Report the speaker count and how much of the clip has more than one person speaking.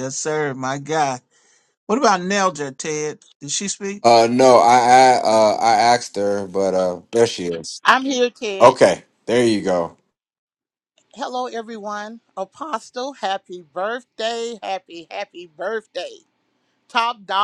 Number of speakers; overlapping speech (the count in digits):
3, about 1%